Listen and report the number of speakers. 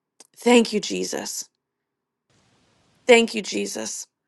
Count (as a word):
one